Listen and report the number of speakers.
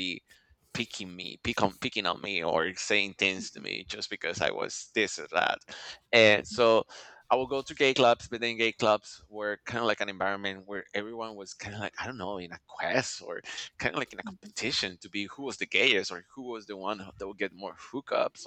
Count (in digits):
1